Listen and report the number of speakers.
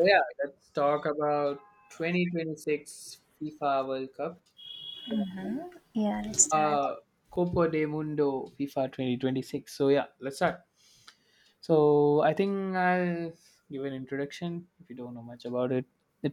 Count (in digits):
2